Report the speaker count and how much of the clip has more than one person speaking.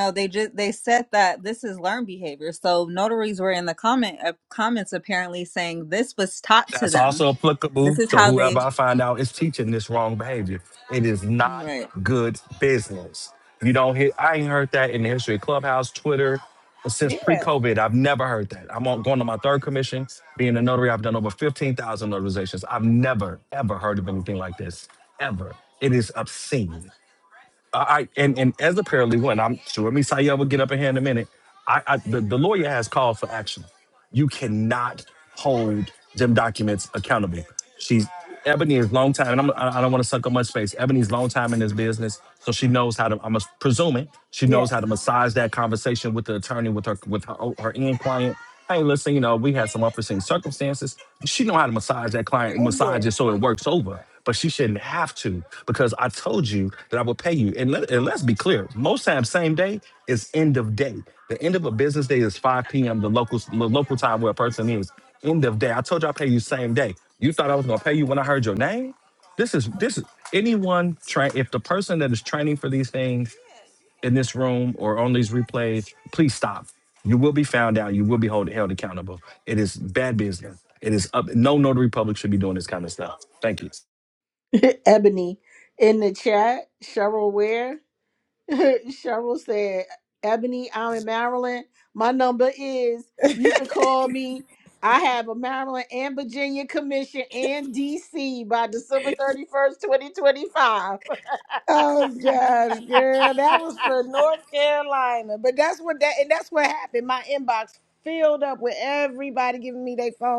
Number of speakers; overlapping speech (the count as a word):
four, about 3%